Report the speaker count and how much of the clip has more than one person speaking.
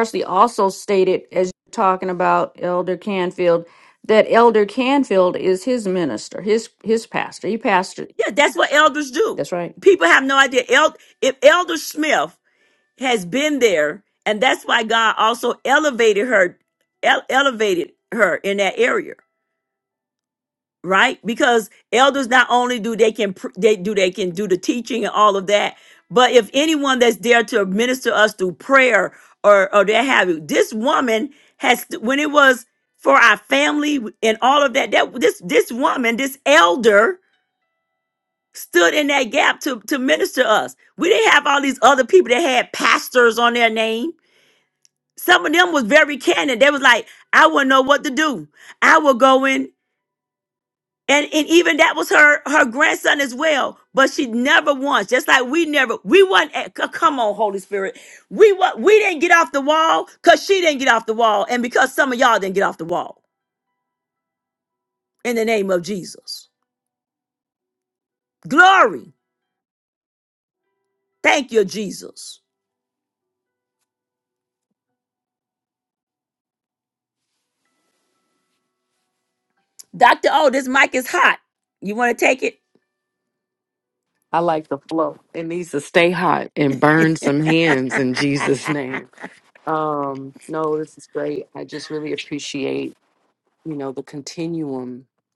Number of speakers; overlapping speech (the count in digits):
3, about 1%